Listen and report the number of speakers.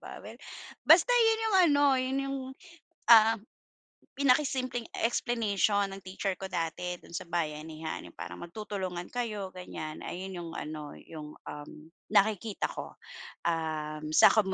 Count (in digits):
1